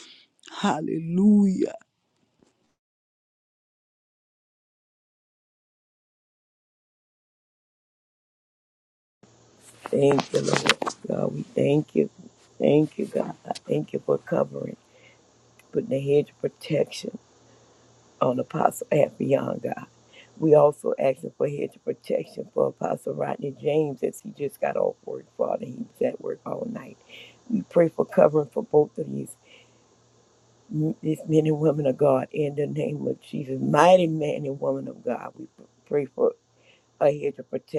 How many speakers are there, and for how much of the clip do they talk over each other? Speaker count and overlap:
2, no overlap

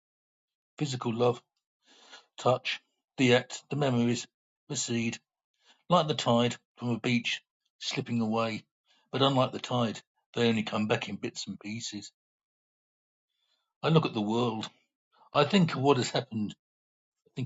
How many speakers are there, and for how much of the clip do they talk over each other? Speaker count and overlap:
1, no overlap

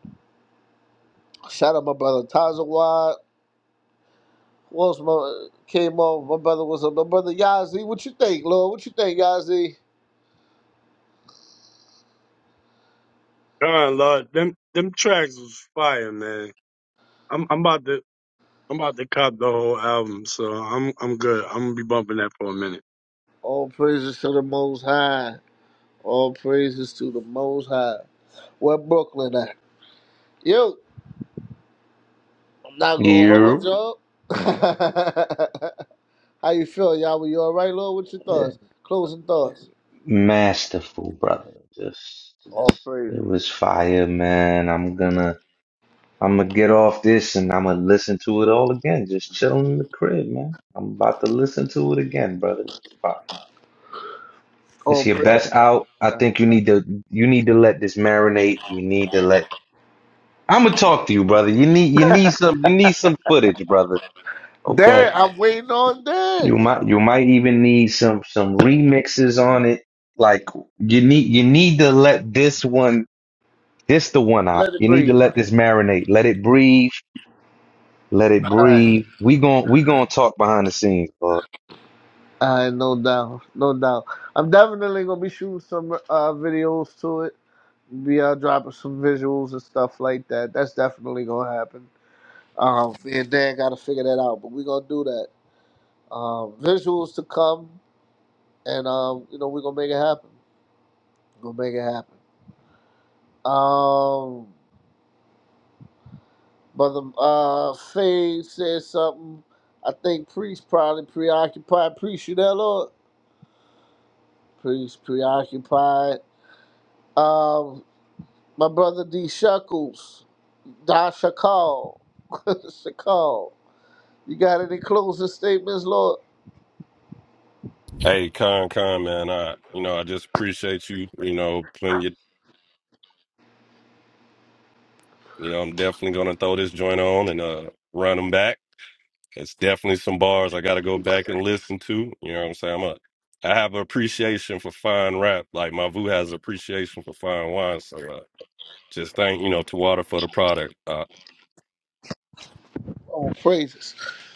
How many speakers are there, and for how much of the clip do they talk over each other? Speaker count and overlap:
4, about 2%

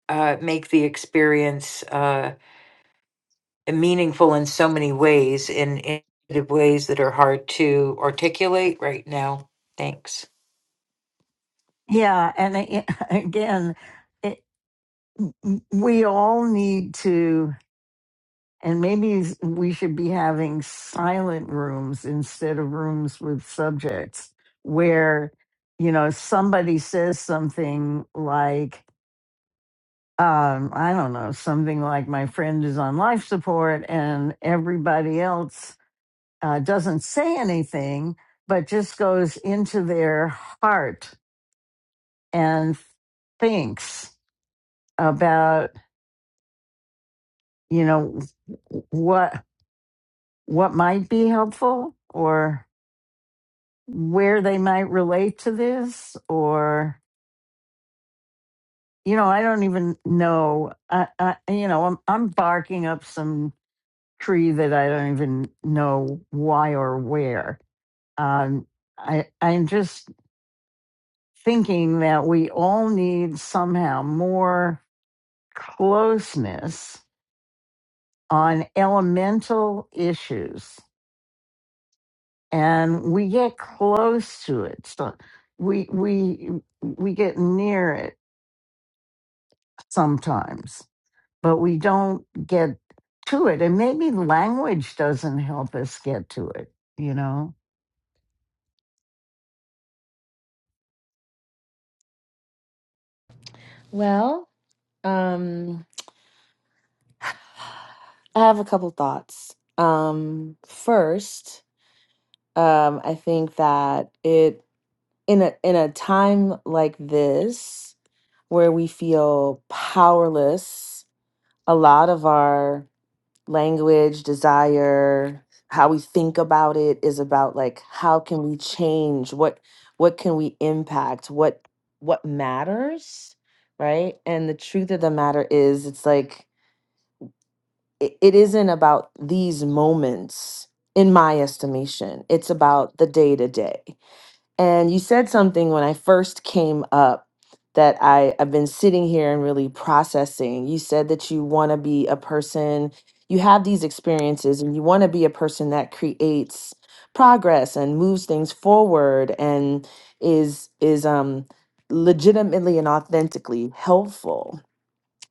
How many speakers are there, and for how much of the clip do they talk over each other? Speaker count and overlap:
3, no overlap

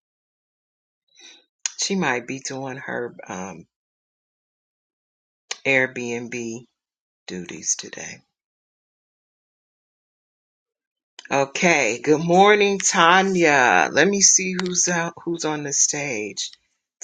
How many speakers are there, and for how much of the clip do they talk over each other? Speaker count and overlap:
1, no overlap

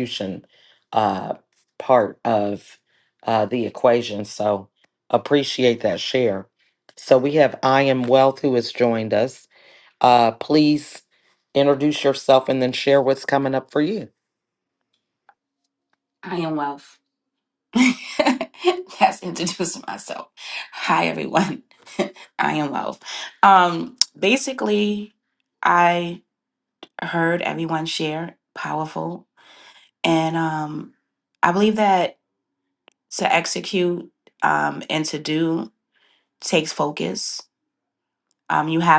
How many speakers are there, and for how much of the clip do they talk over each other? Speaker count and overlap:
2, no overlap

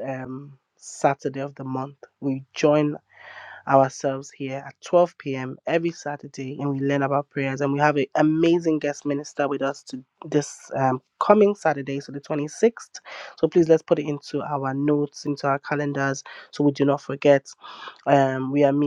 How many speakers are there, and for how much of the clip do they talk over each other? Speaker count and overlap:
1, no overlap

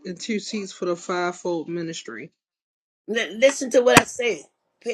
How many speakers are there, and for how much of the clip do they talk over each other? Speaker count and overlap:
2, no overlap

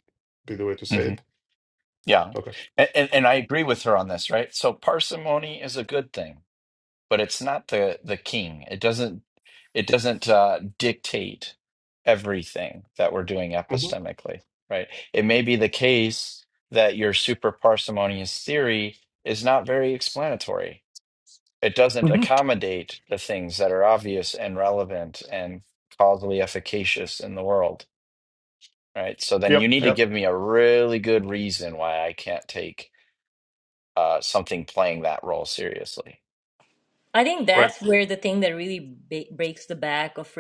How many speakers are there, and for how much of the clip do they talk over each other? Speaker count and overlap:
3, about 4%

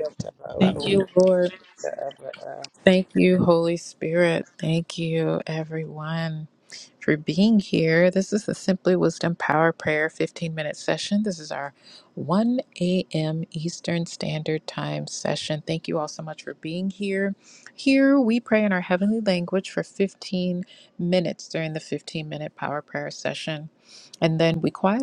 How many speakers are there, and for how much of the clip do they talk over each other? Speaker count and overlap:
2, about 1%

